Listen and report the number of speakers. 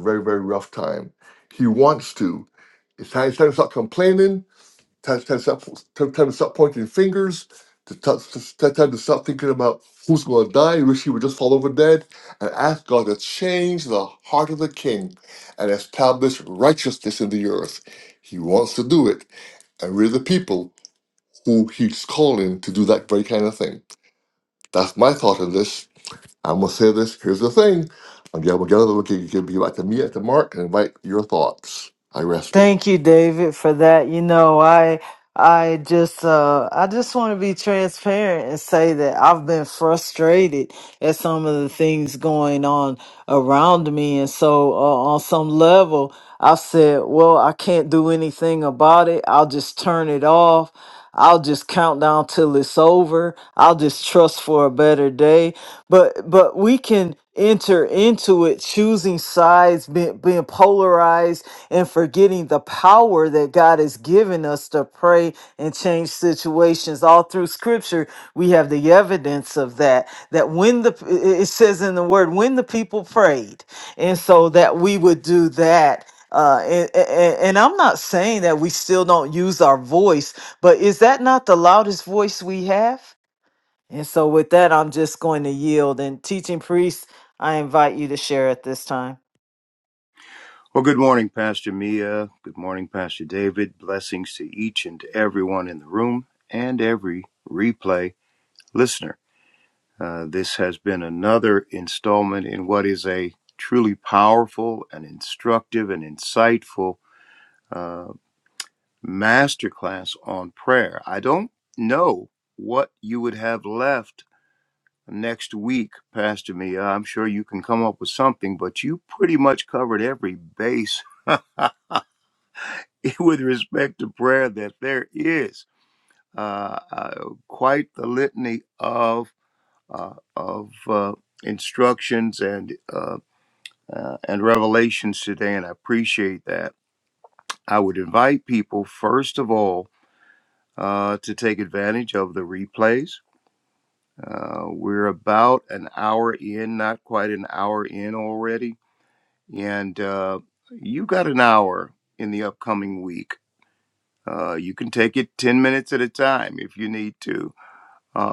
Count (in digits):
3